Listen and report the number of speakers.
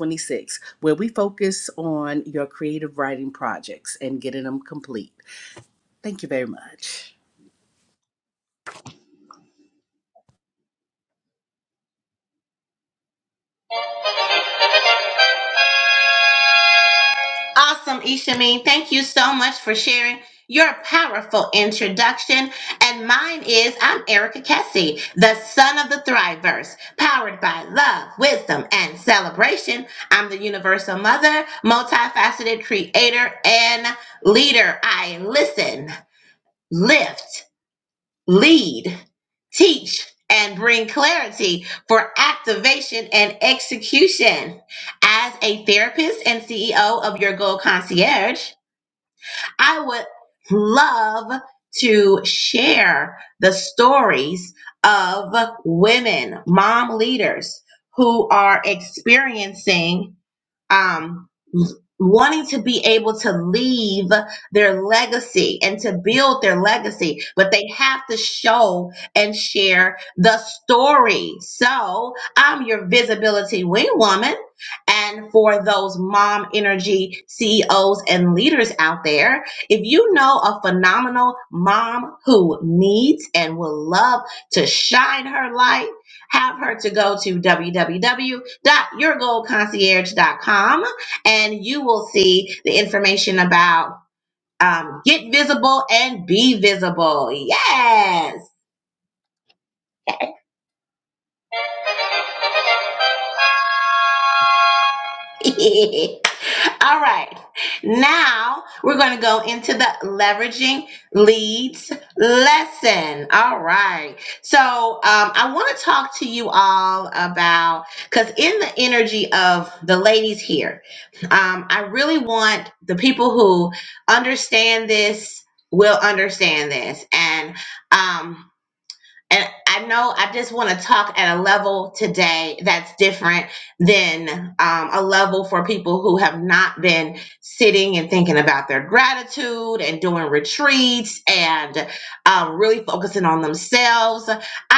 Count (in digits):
2